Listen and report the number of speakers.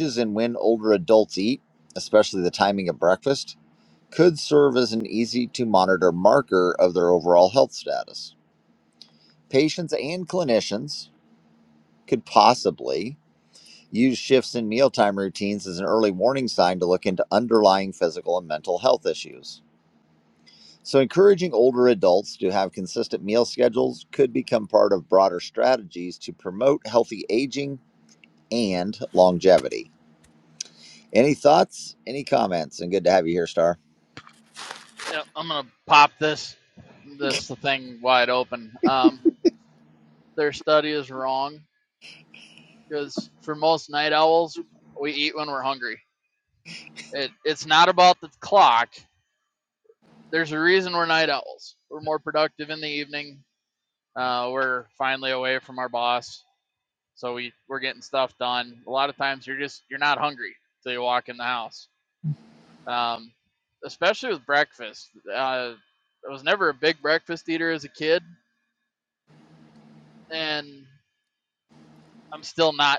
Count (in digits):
2